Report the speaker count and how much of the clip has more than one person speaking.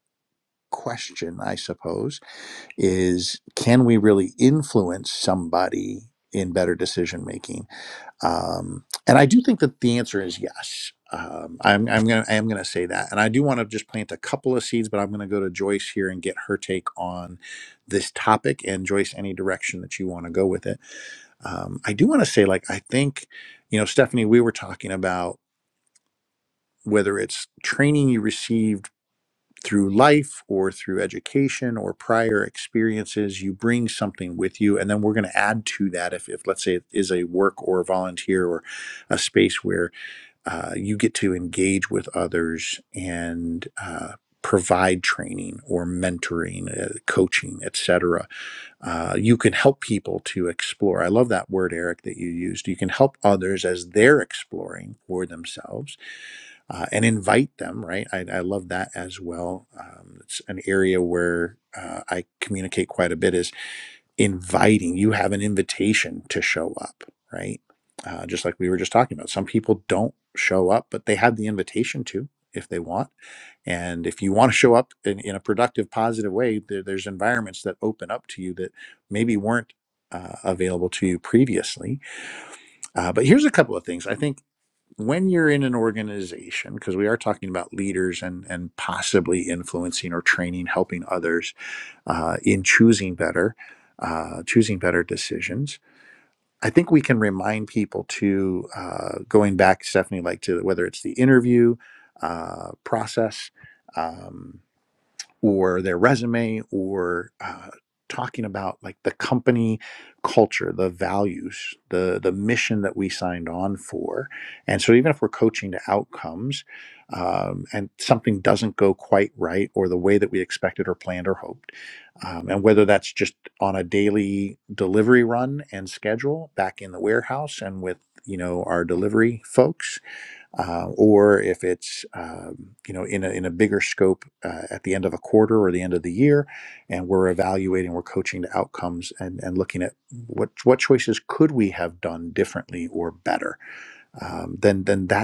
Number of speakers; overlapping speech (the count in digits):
1, no overlap